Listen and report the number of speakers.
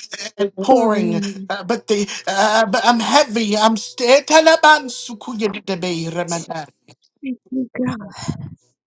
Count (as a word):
two